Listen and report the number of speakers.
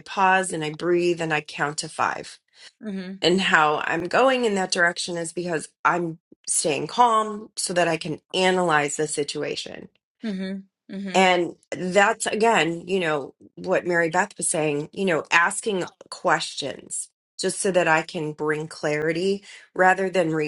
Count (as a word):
two